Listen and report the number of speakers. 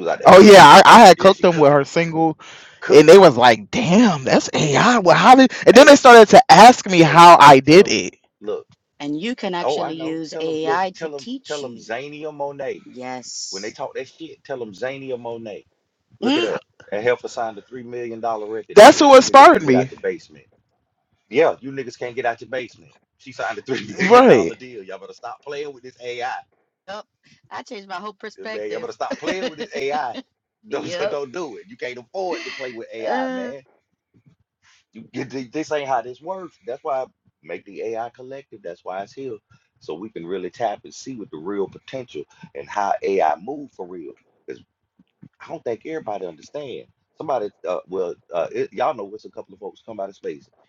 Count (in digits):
3